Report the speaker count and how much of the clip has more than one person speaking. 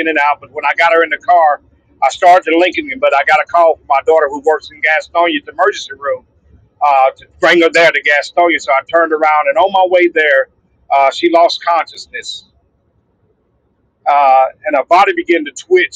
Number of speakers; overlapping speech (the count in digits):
1, no overlap